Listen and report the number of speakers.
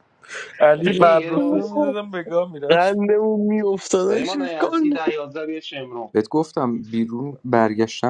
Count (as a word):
four